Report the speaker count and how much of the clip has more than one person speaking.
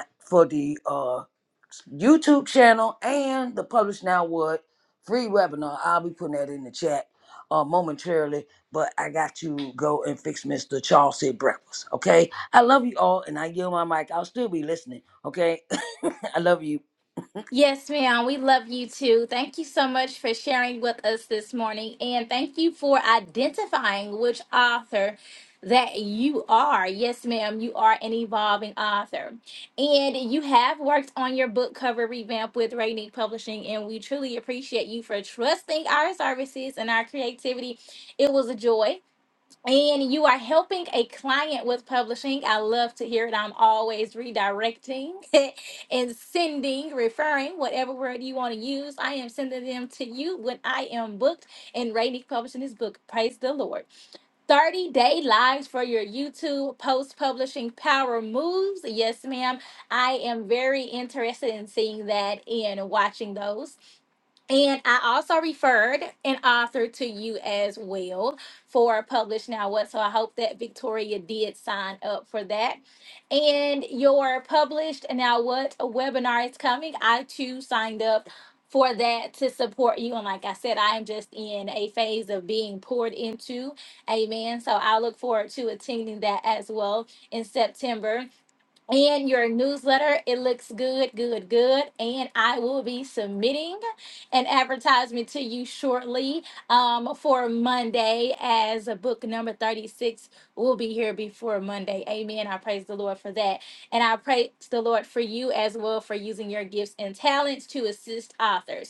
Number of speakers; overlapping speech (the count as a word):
two, no overlap